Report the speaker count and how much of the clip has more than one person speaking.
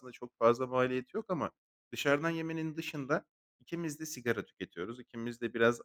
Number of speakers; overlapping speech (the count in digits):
1, no overlap